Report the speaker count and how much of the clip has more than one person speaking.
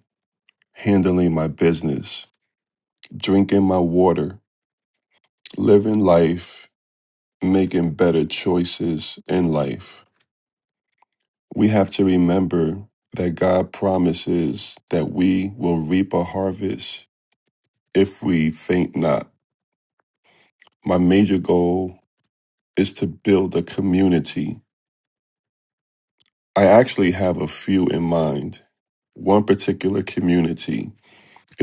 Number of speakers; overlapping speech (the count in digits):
1, no overlap